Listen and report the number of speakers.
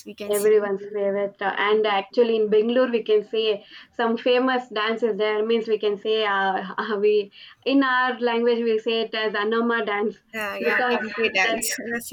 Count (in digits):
2